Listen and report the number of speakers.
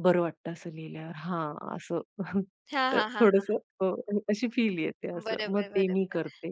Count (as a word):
two